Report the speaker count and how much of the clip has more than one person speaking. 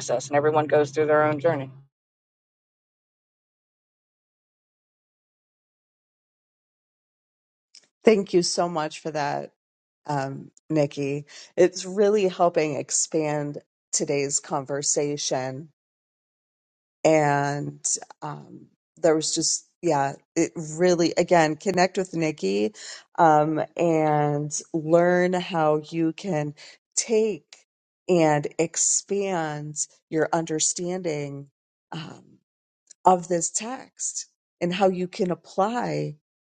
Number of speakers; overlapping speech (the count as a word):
two, no overlap